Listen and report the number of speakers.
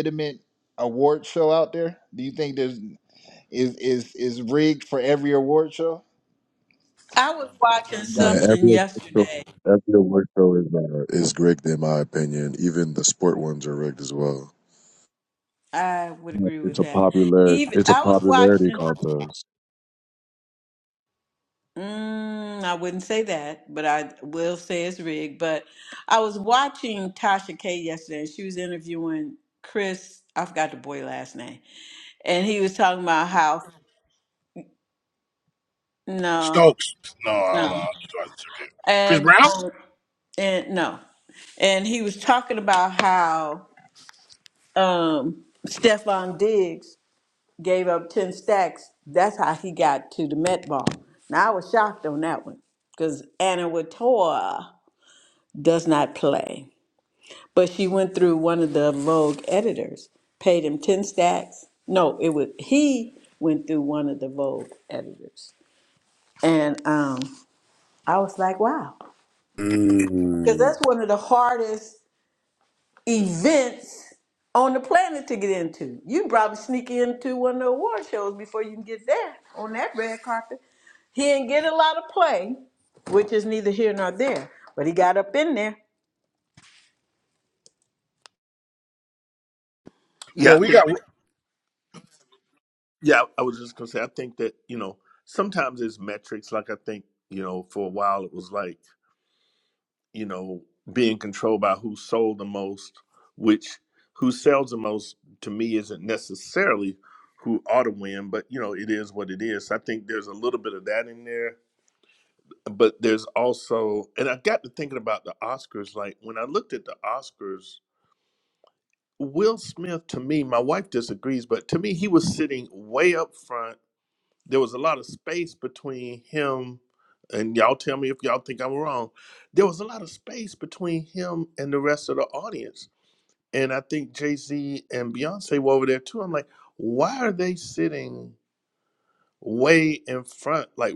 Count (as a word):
six